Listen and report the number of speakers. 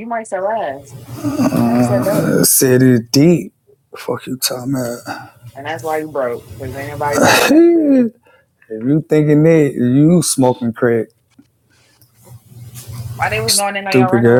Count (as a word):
two